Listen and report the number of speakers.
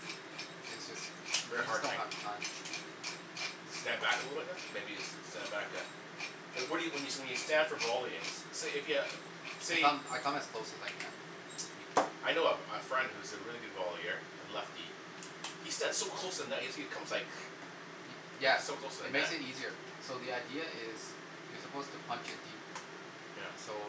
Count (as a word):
two